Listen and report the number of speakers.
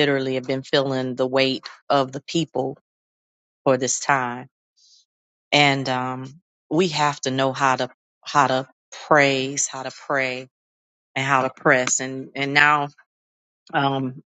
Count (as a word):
one